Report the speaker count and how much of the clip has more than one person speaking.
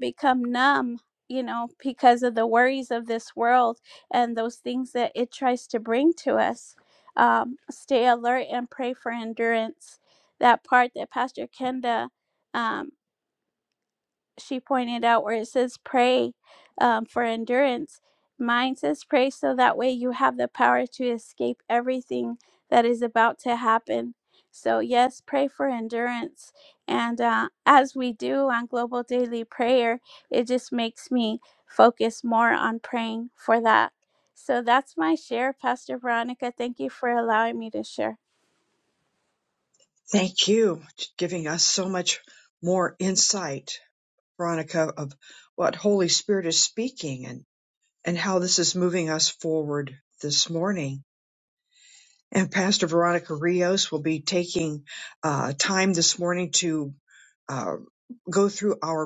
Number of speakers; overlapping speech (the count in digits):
2, no overlap